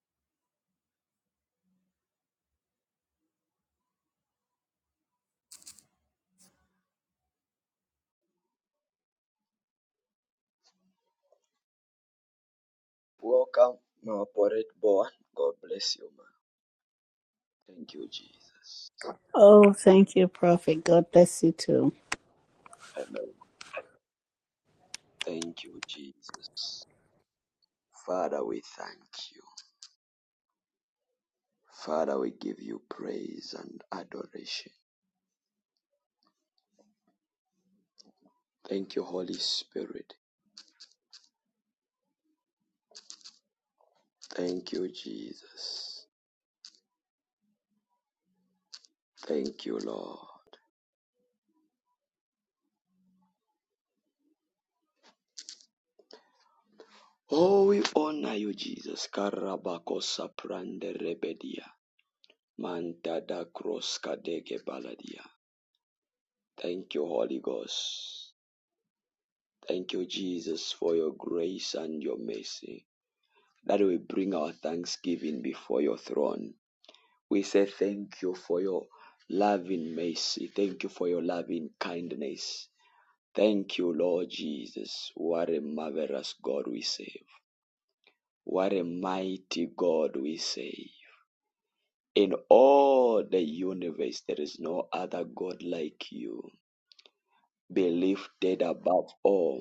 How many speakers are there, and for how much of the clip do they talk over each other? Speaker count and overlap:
two, no overlap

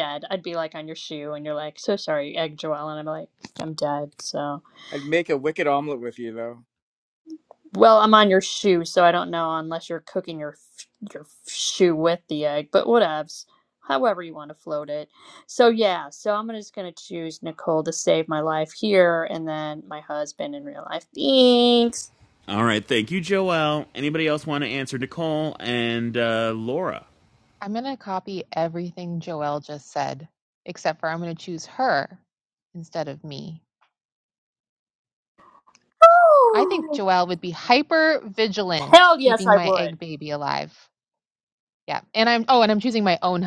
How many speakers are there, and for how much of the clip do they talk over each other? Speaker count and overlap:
four, about 3%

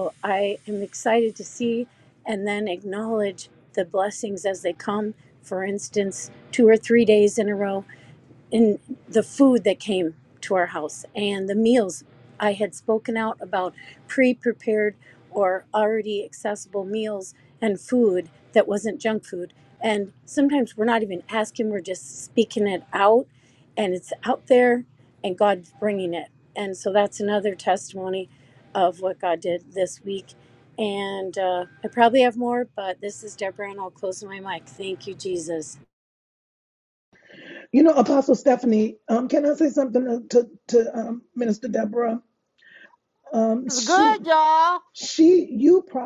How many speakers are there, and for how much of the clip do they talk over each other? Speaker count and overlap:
three, about 1%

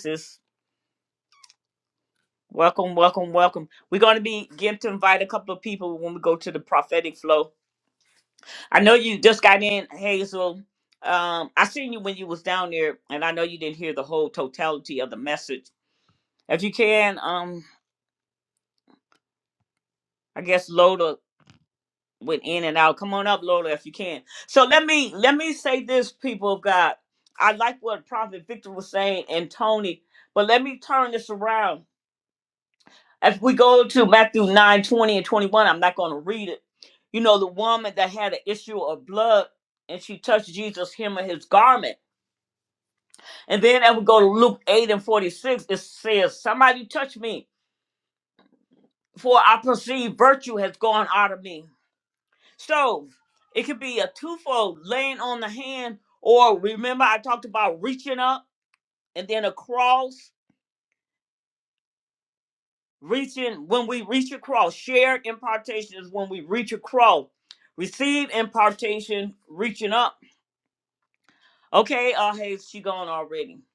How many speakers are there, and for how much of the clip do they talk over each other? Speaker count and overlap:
one, no overlap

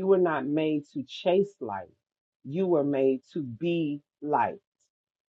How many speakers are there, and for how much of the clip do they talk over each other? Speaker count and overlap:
one, no overlap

